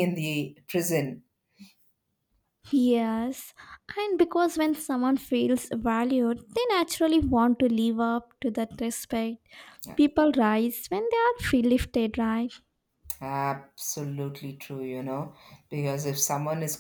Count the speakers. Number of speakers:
2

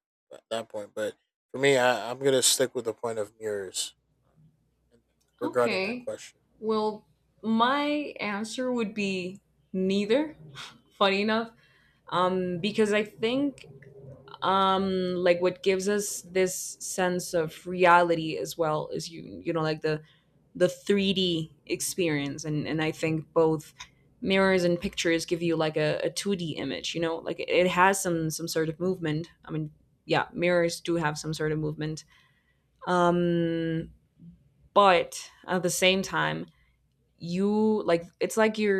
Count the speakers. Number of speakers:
2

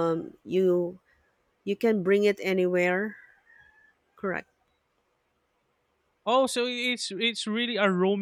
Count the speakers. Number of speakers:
2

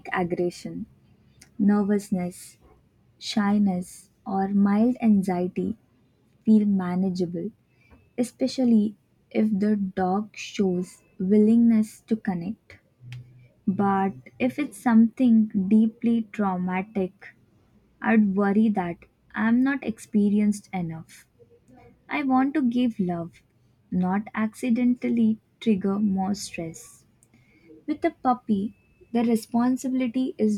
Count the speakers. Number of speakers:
1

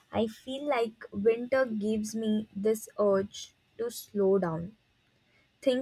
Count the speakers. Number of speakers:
1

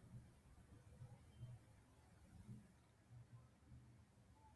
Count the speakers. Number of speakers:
0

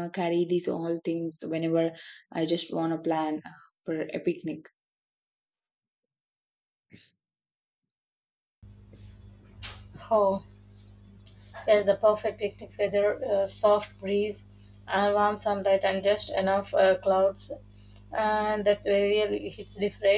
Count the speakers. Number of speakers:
2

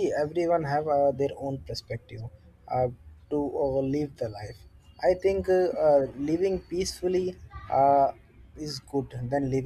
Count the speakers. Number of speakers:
1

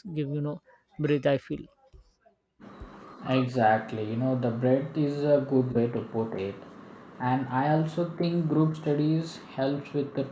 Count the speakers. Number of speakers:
2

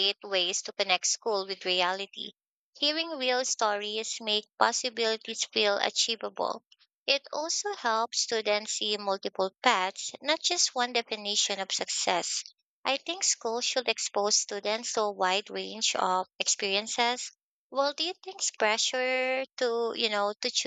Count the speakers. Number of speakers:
1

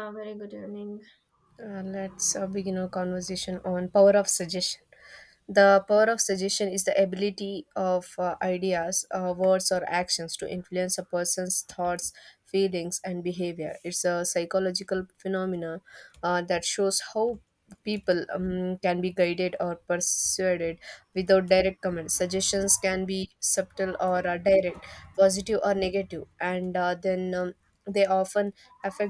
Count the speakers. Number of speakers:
2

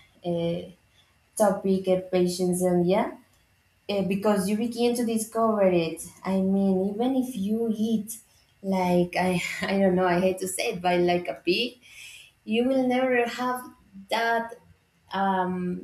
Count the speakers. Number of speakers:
1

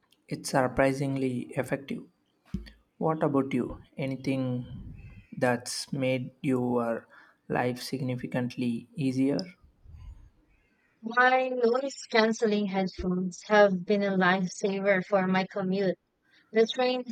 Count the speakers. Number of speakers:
2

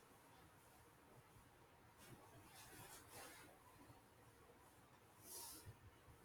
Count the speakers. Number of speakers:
0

